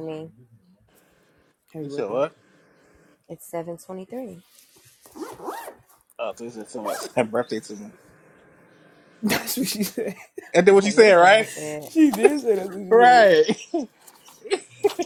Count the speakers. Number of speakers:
3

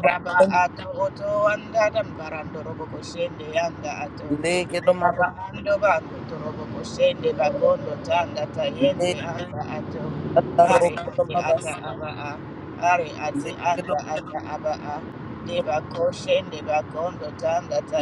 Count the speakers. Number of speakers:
2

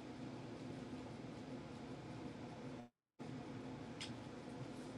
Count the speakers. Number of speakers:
0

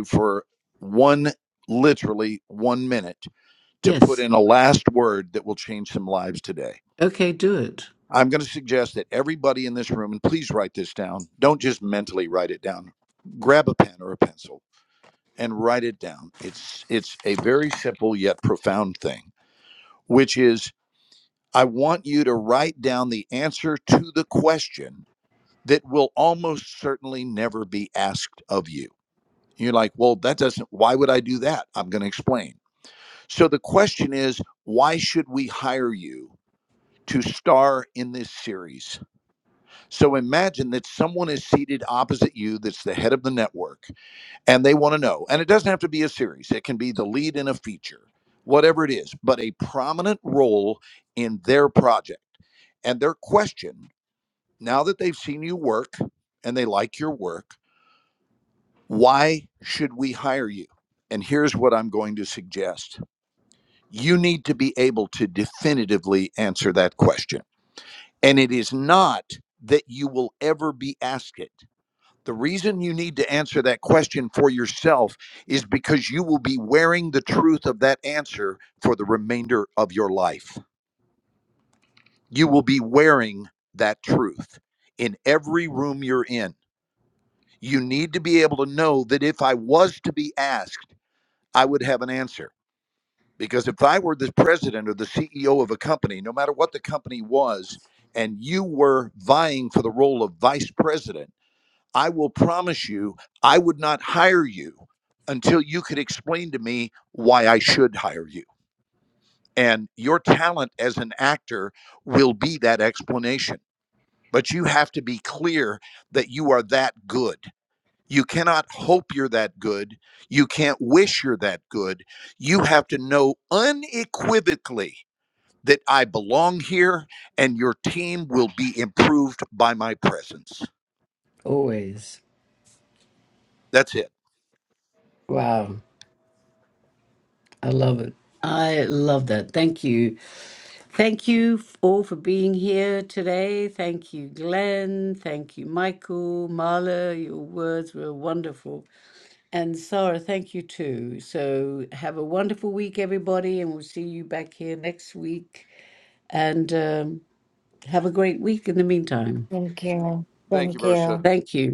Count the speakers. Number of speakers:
3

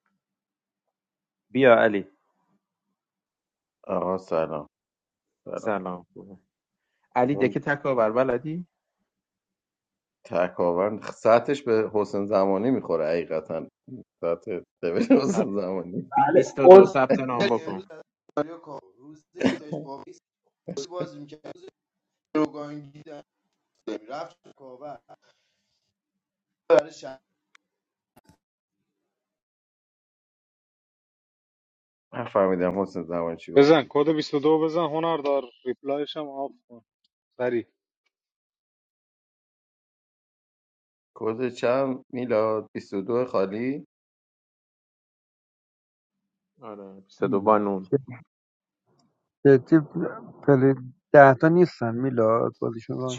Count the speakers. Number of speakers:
5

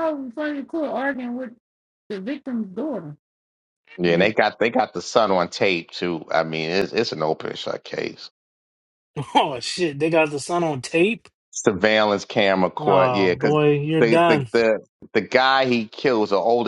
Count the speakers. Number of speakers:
3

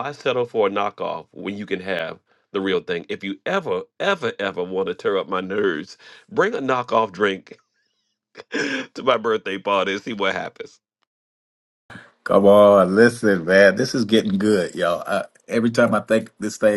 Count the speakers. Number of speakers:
2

